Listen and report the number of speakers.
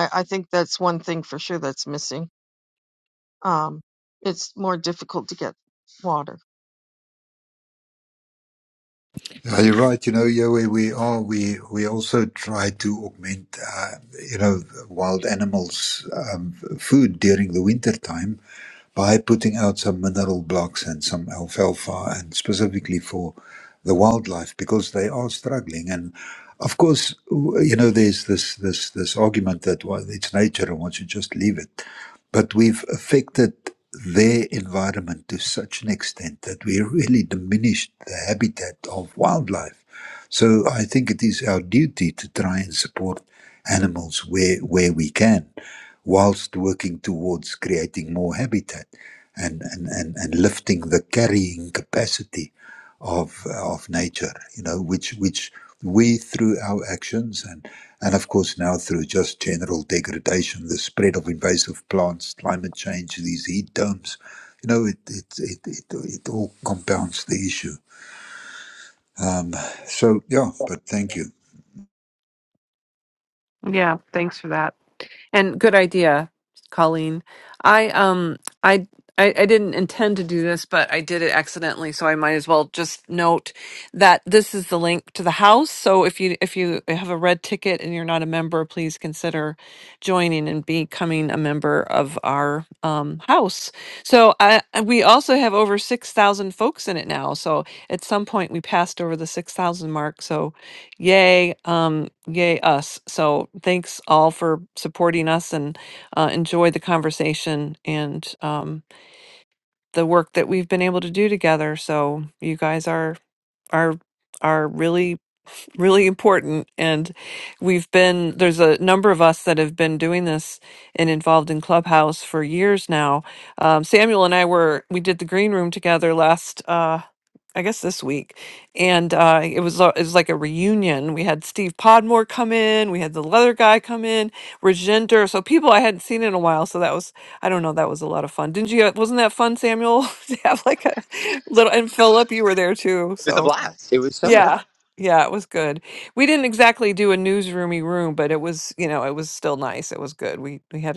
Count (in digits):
4